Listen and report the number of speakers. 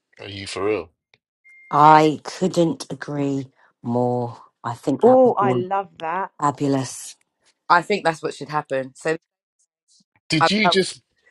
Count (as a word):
four